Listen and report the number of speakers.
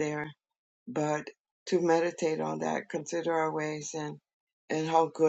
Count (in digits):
1